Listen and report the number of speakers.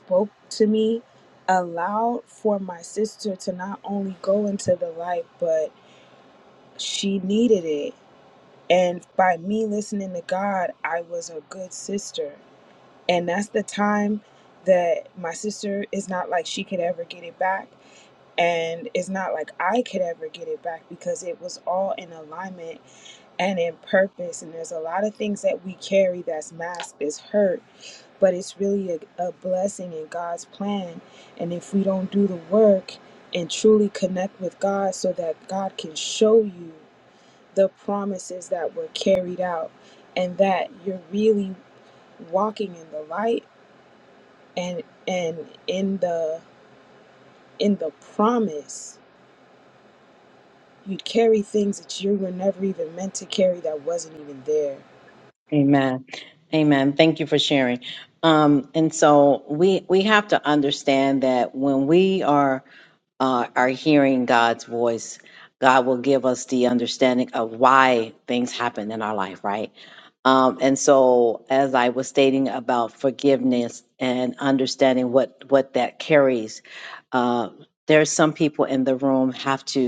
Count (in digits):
2